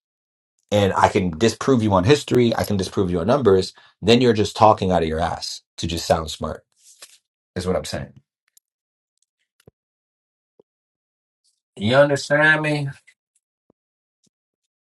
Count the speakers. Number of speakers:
one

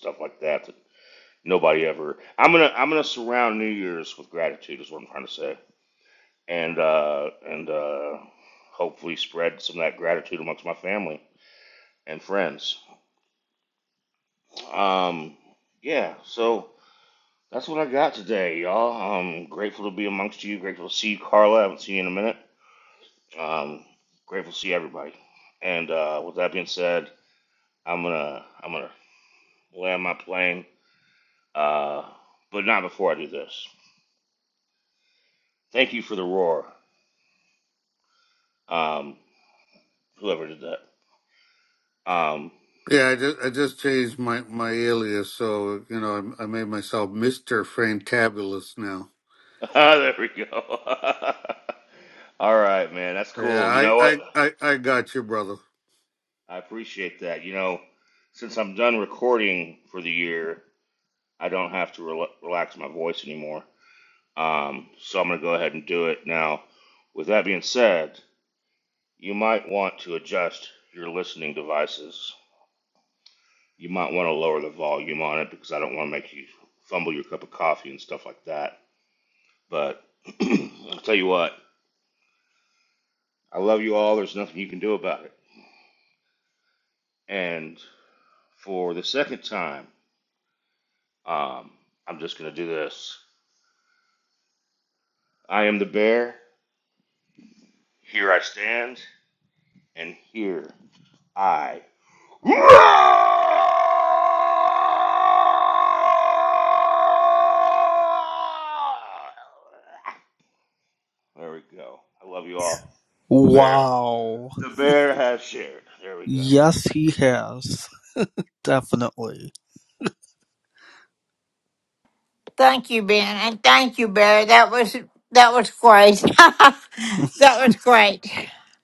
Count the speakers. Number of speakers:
four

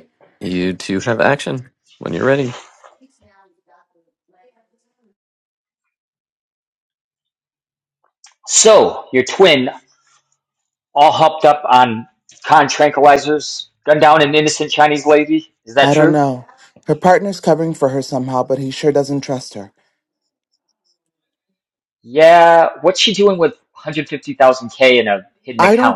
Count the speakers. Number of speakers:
three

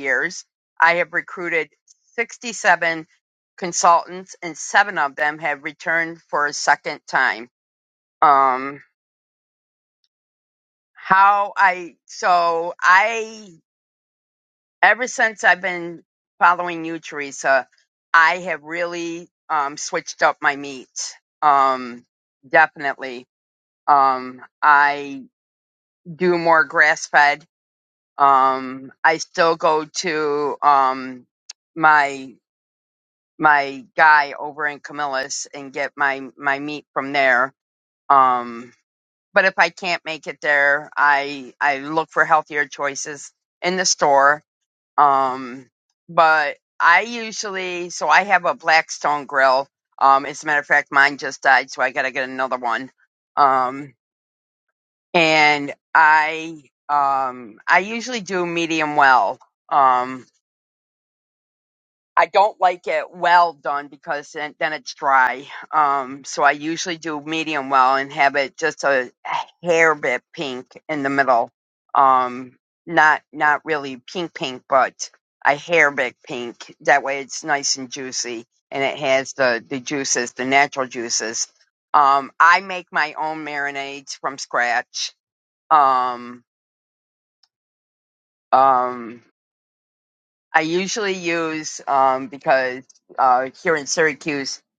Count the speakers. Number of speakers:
one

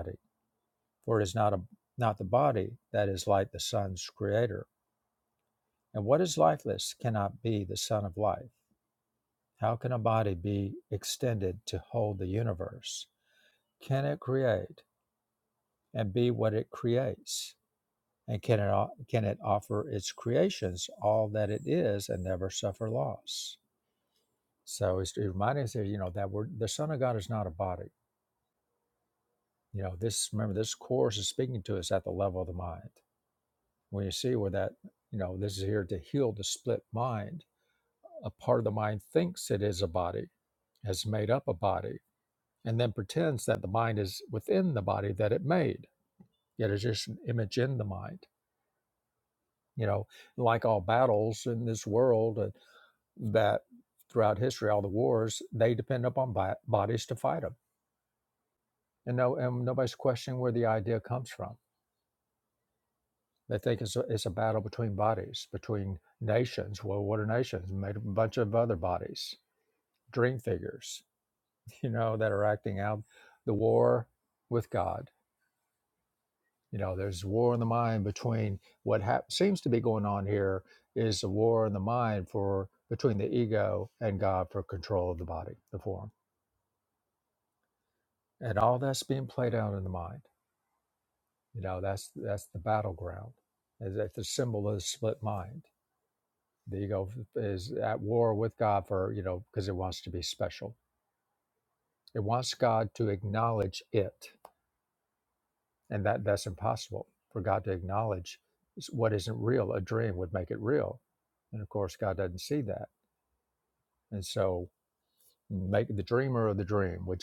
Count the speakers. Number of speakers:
one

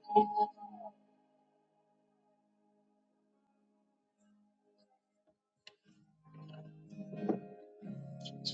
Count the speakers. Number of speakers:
zero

